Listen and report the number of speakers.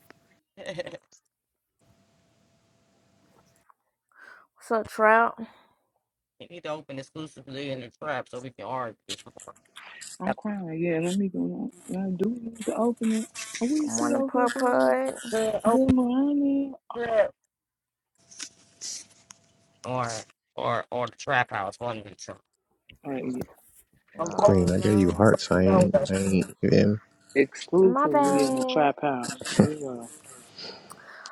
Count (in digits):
4